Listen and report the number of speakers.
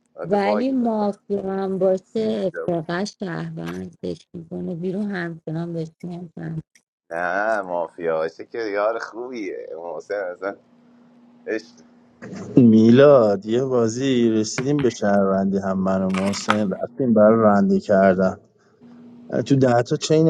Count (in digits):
3